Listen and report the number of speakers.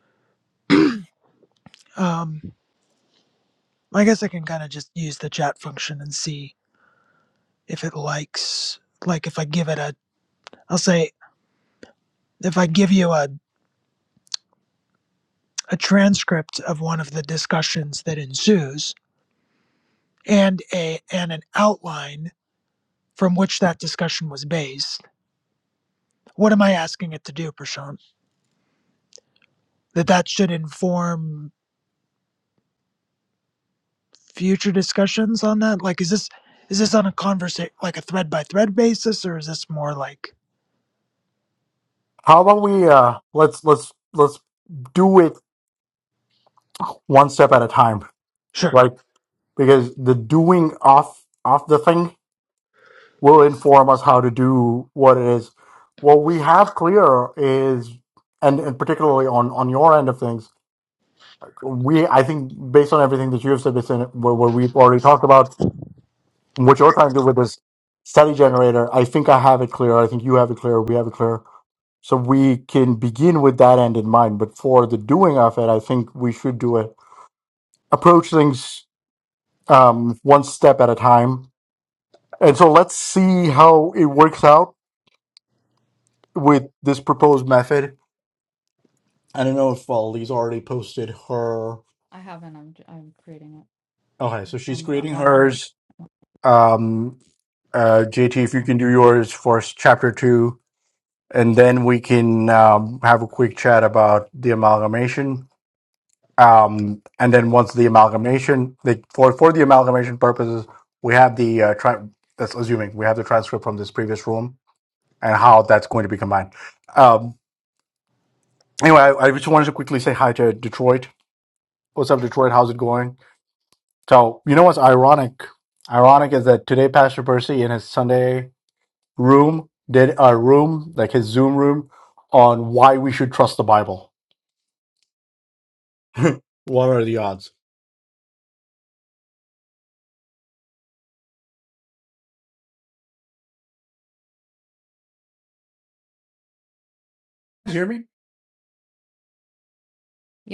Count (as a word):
three